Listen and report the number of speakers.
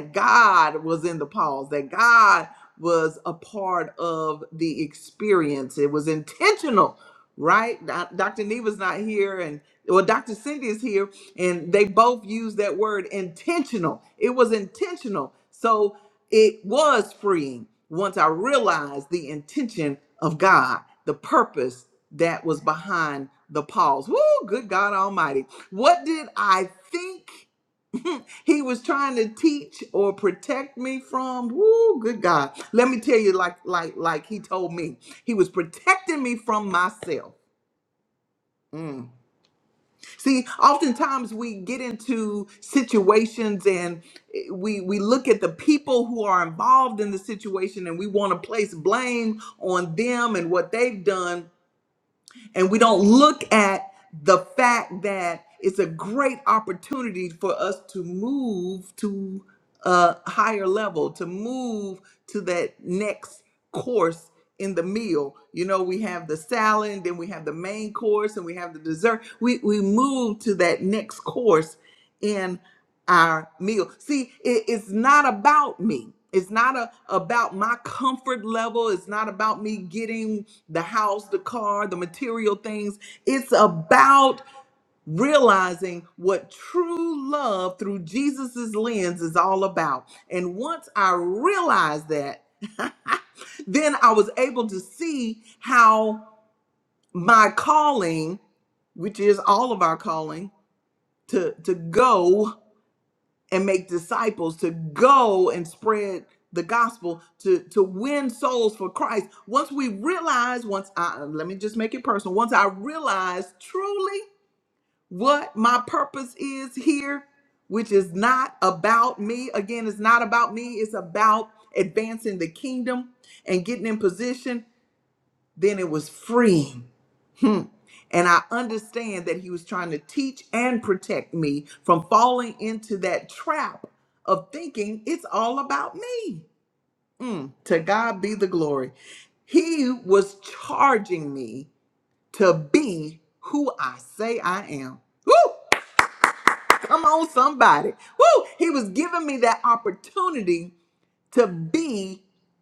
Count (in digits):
1